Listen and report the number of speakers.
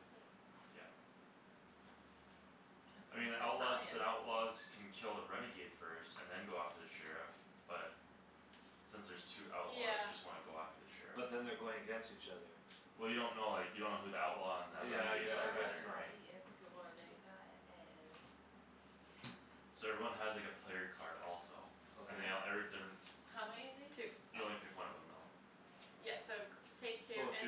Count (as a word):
four